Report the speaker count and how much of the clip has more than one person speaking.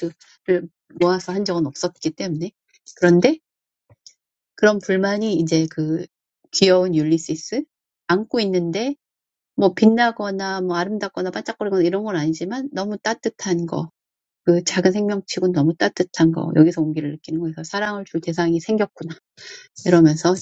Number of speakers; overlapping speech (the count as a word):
one, no overlap